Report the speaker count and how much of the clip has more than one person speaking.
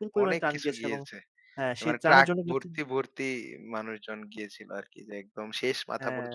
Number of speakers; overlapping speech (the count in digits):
2, about 33%